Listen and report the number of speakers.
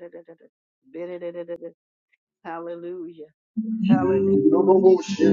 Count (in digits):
2